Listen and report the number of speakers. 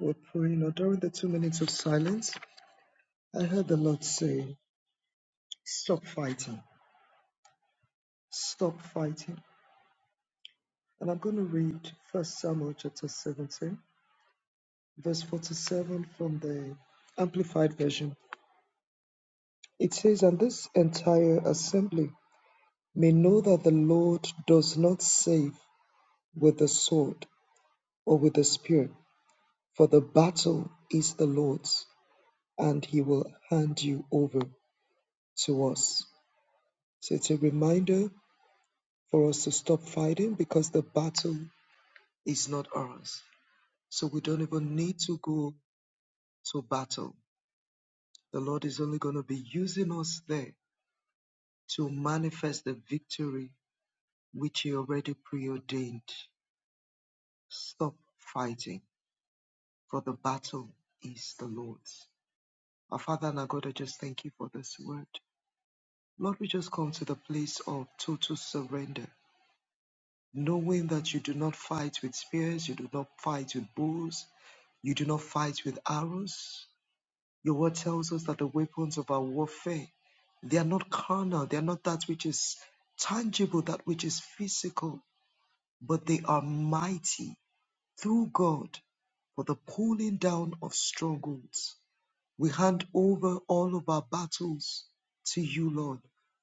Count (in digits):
1